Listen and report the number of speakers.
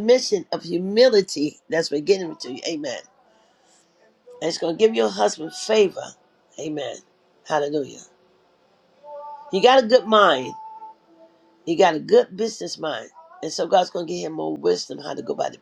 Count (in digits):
1